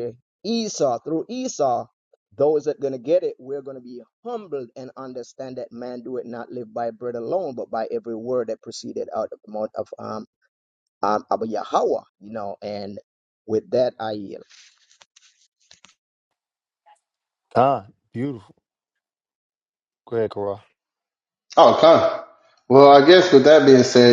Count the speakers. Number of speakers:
3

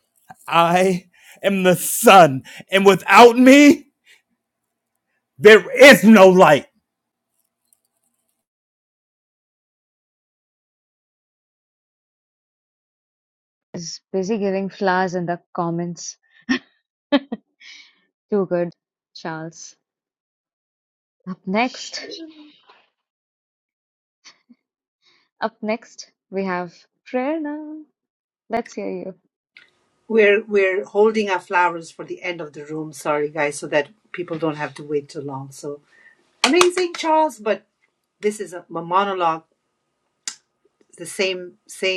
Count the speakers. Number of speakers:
3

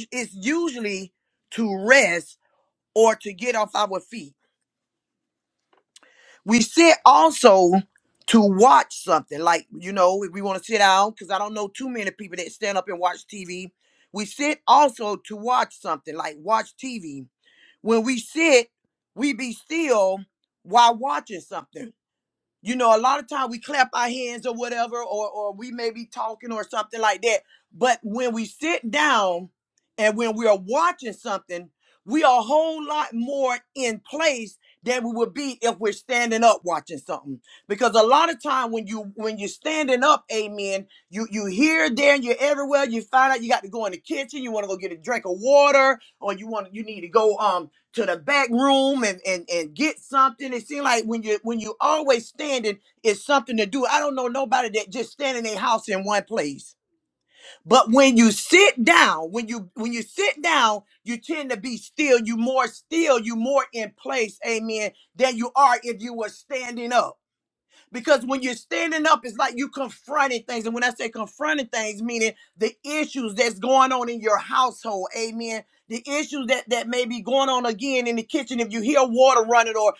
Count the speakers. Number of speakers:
1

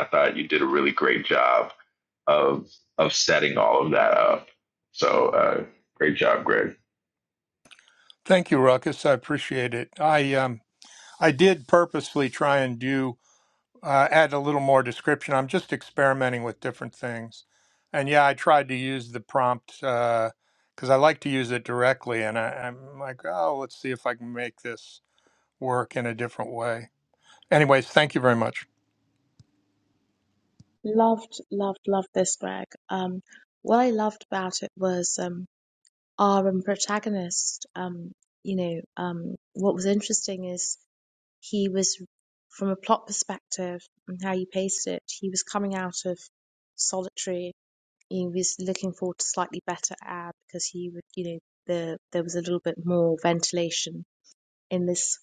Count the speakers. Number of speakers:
3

